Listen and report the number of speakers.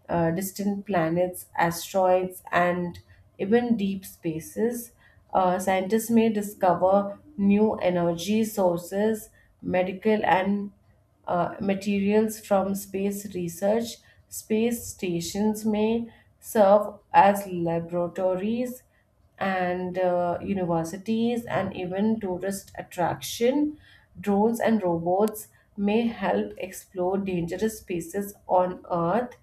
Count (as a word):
one